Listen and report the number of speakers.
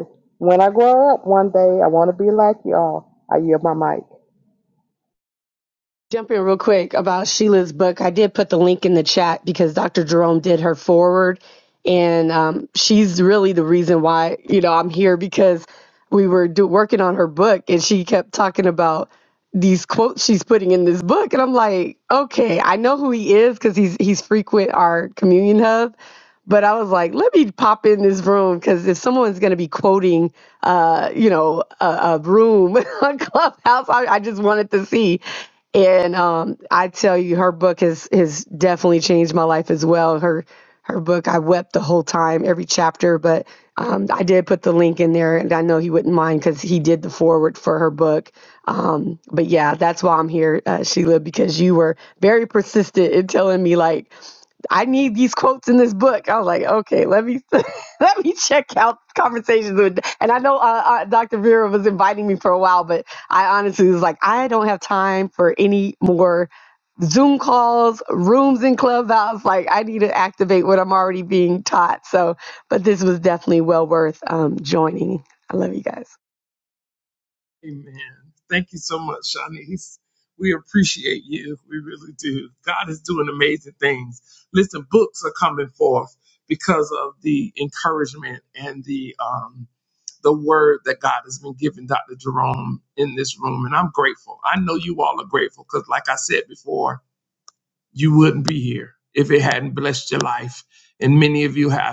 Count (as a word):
three